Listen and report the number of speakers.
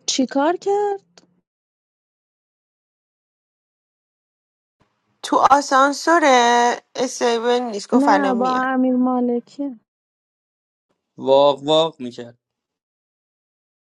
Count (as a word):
three